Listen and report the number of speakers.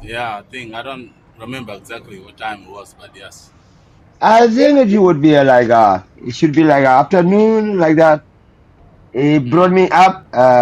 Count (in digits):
2